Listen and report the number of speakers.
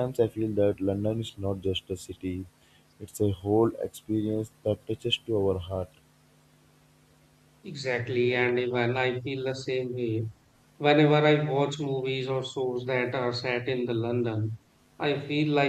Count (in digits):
2